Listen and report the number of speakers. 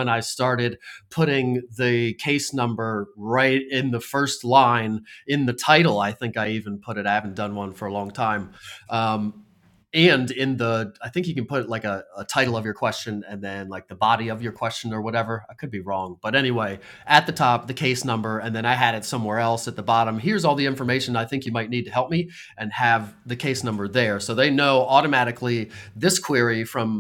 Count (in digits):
1